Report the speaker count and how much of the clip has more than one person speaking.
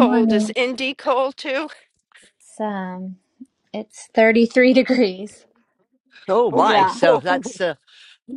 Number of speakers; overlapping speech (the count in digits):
3, about 12%